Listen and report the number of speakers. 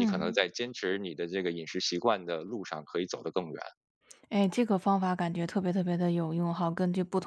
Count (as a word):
two